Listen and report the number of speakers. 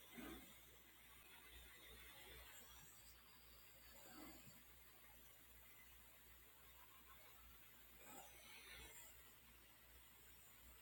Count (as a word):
zero